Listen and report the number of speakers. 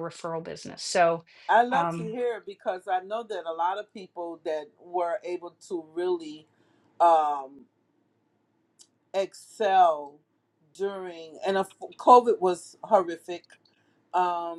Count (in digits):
2